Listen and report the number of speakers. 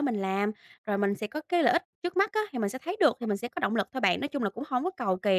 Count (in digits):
1